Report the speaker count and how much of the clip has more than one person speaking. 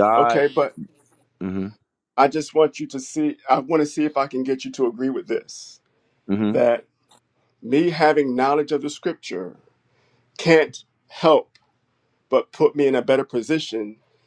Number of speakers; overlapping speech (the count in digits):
2, about 2%